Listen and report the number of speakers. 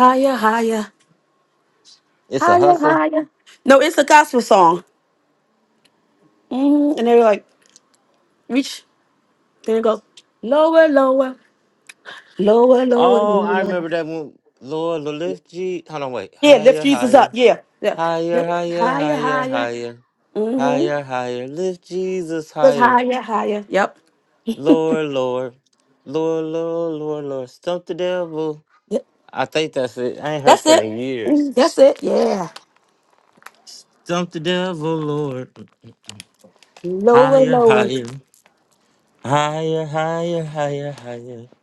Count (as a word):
two